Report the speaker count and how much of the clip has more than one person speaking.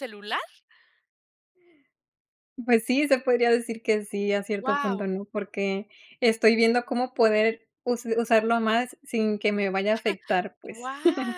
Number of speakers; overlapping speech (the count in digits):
2, about 5%